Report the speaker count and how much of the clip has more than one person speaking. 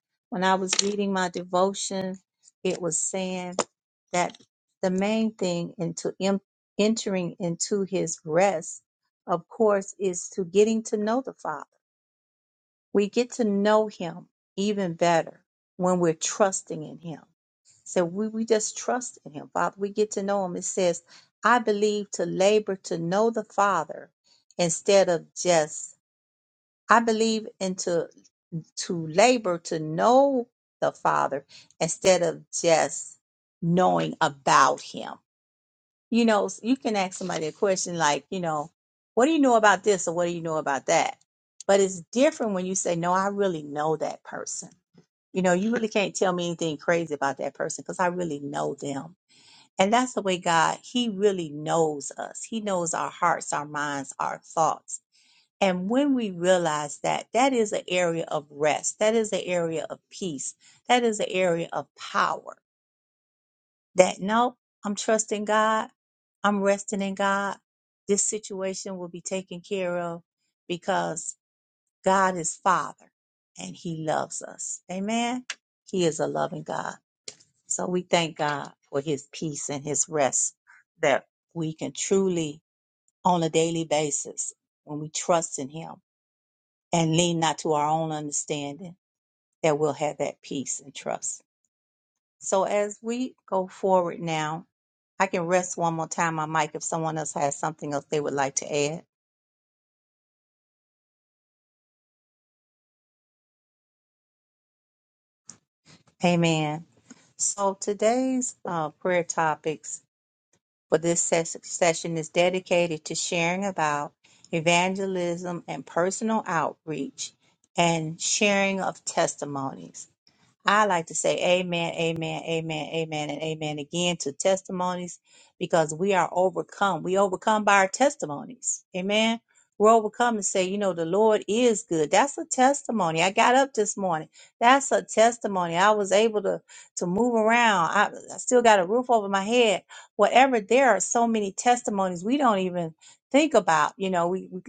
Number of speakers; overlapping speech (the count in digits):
1, no overlap